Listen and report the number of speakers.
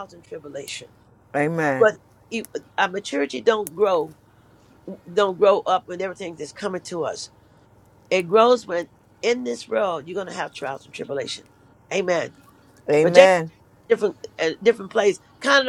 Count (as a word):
two